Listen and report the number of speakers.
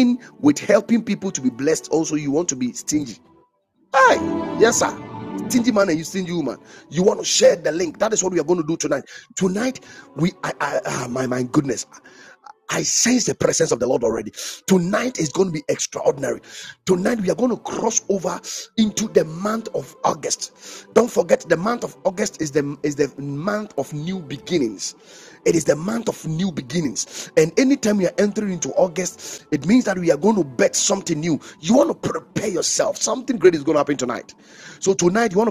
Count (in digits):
1